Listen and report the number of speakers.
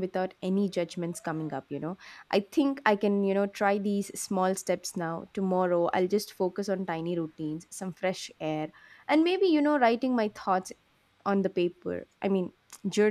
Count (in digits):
1